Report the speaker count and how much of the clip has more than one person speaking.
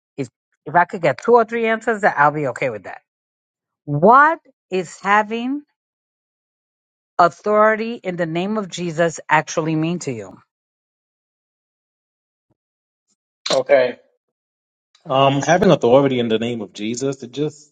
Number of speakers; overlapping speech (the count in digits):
2, no overlap